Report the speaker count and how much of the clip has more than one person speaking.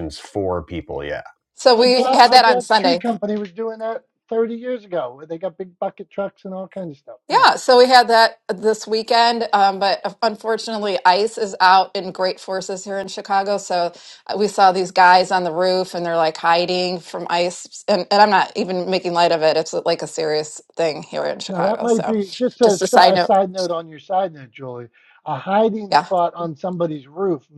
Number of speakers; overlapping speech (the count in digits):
3, about 11%